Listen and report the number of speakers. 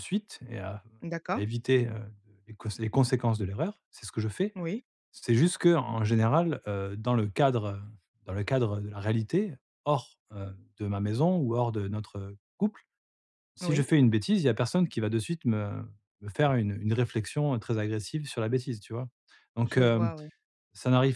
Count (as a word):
two